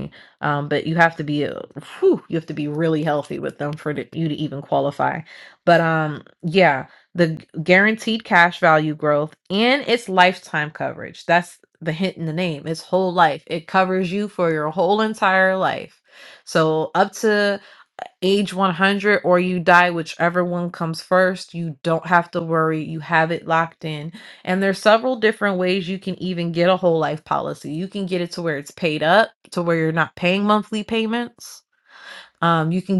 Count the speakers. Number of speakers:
1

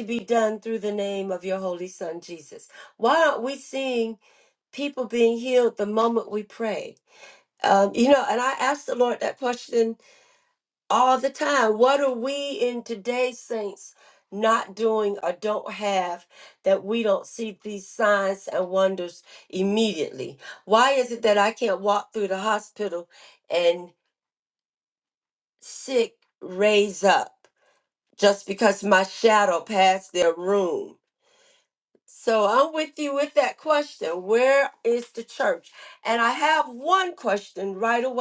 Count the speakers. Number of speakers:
1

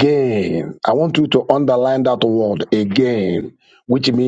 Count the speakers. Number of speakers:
1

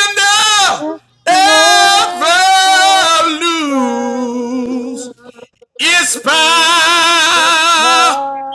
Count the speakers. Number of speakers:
2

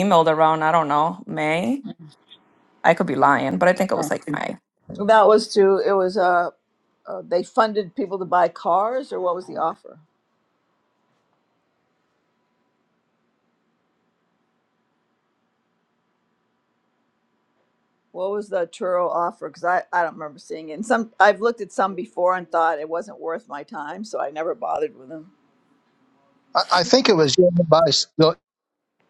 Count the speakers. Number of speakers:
3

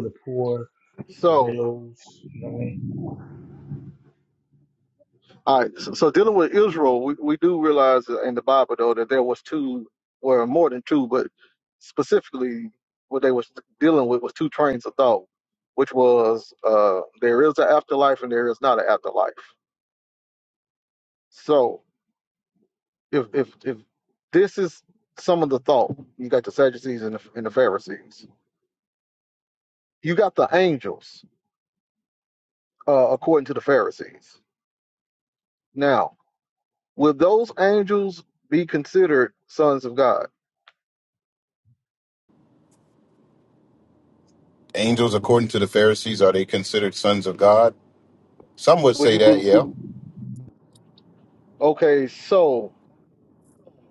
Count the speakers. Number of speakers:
3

